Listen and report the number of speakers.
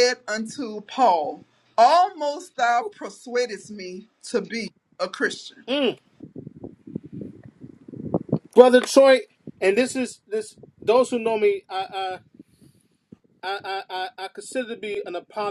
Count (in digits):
2